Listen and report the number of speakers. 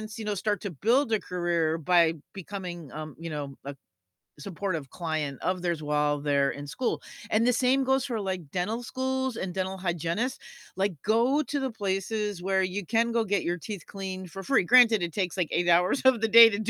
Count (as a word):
one